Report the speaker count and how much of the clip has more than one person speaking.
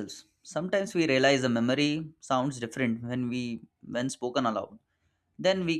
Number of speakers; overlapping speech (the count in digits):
1, no overlap